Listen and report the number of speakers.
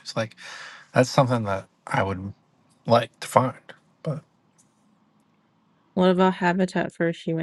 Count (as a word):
two